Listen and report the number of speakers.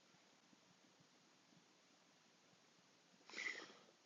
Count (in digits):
0